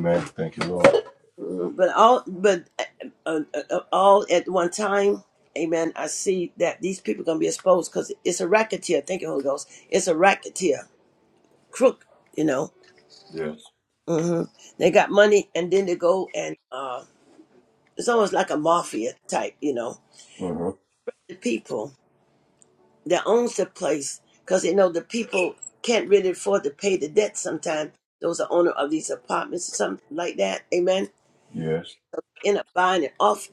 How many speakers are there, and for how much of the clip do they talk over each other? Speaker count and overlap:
2, no overlap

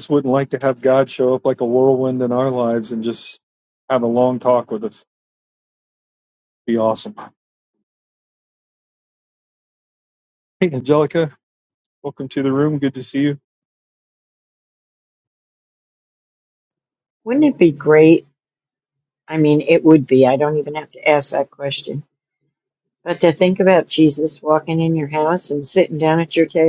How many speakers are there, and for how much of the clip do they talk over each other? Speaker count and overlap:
2, no overlap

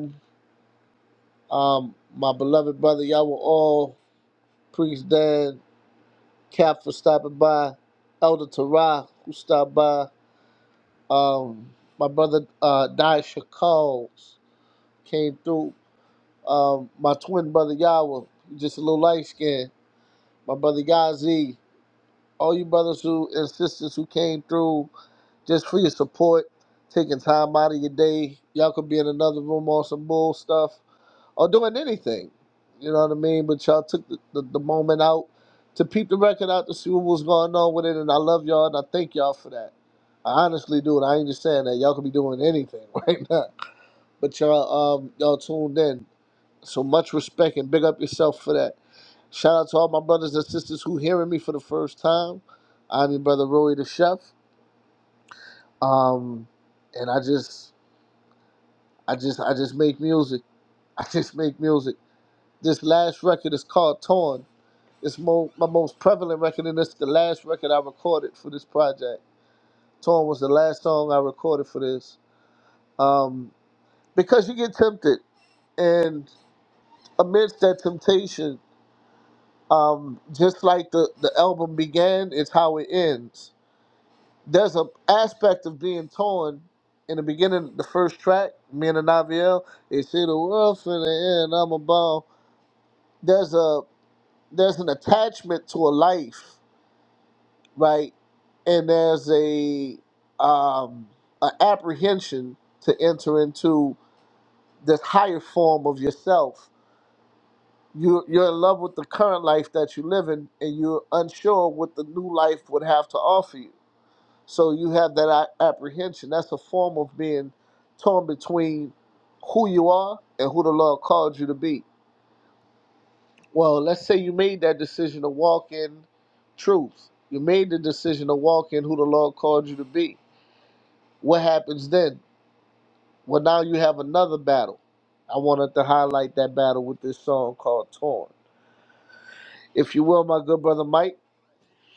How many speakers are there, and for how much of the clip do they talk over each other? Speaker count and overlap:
1, no overlap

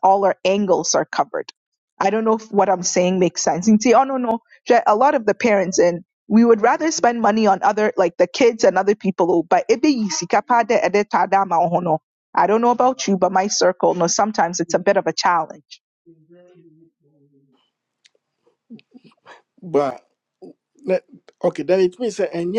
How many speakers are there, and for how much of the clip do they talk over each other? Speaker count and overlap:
2, no overlap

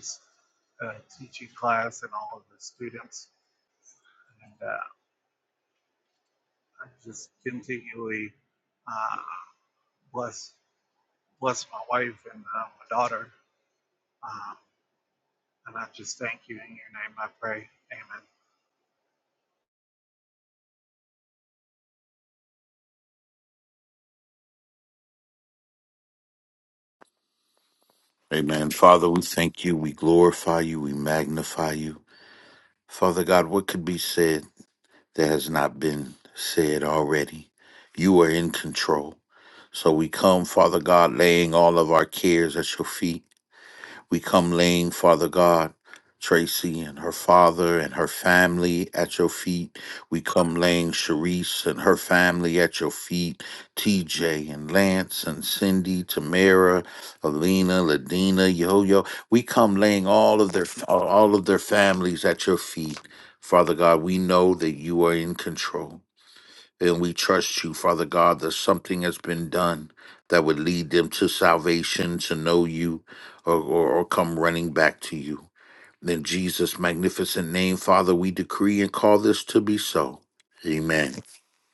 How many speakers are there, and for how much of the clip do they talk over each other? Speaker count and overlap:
2, no overlap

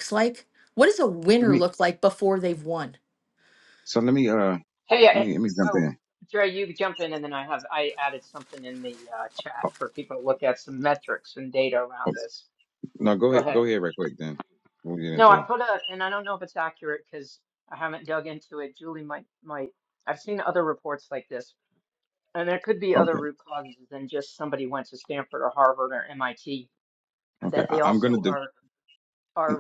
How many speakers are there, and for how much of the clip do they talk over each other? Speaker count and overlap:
3, about 9%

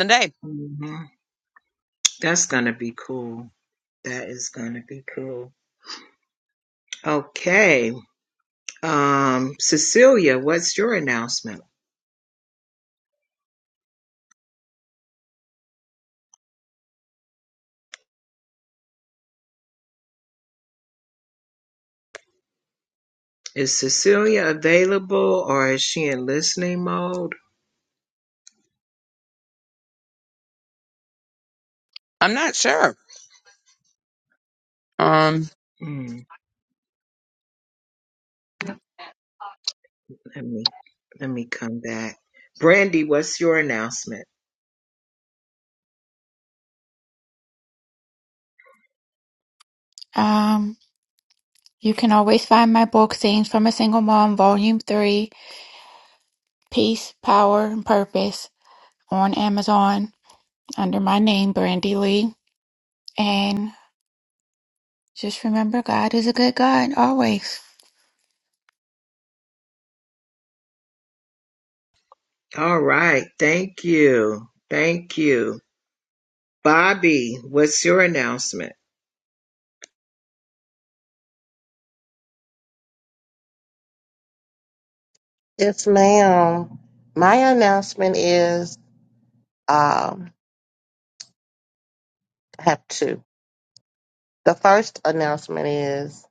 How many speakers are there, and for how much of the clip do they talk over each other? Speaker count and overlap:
4, no overlap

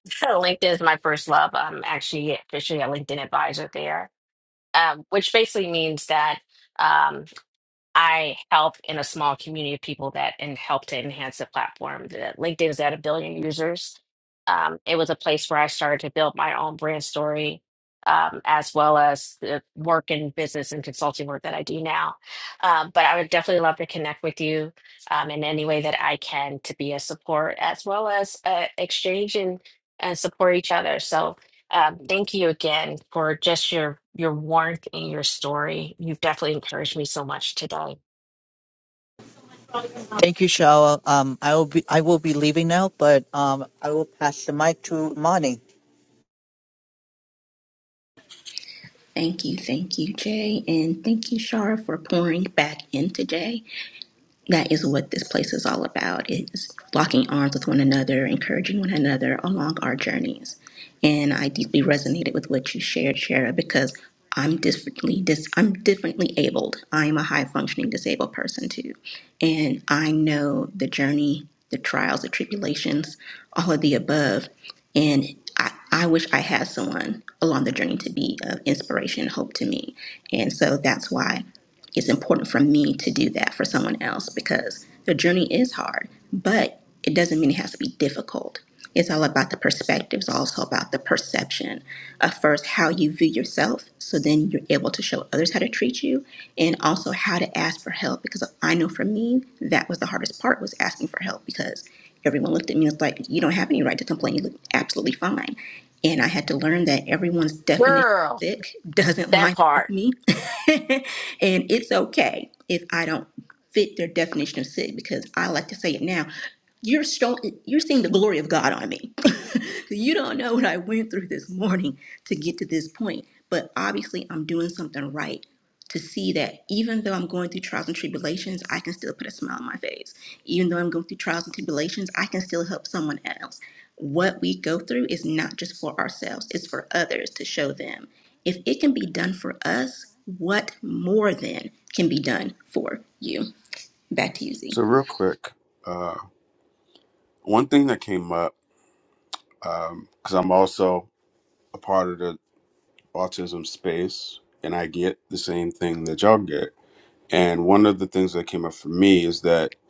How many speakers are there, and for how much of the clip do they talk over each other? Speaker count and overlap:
4, about 1%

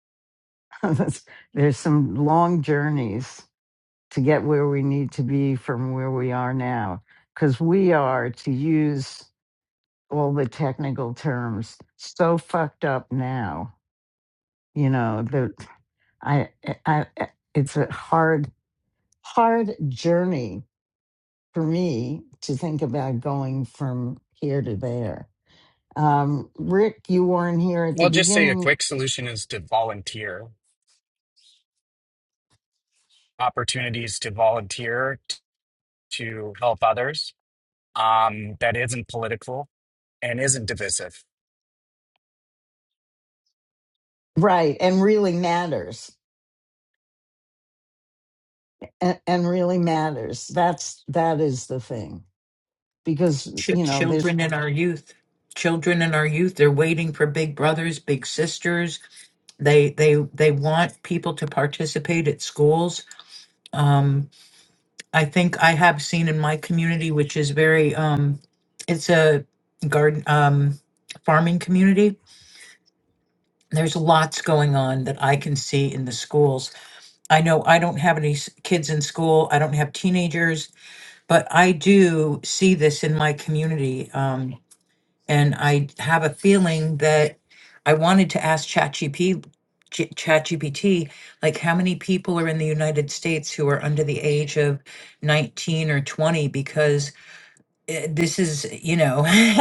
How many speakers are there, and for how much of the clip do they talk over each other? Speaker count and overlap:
3, about 2%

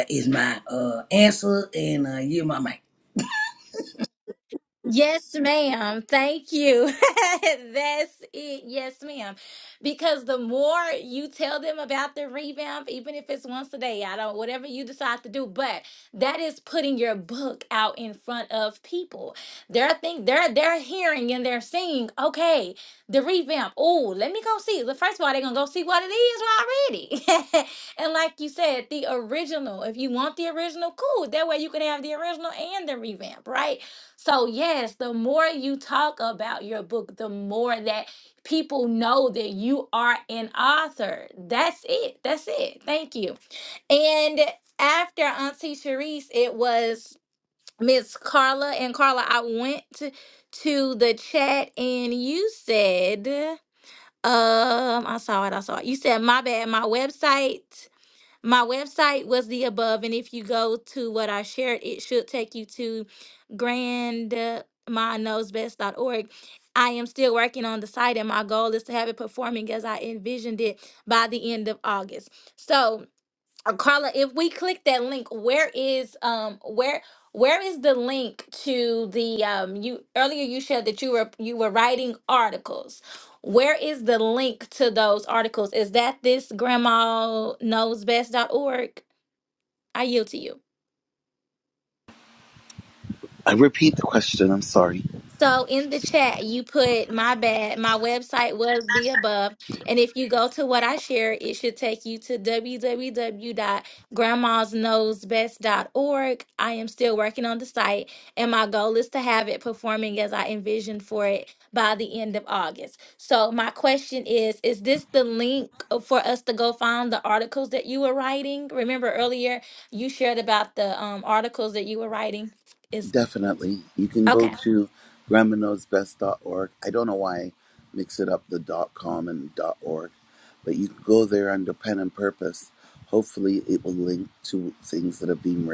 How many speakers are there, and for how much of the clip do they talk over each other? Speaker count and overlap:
3, under 1%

